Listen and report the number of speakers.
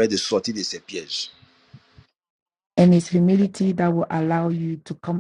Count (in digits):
2